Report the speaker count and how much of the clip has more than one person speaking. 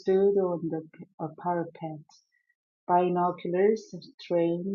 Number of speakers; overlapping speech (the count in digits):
1, no overlap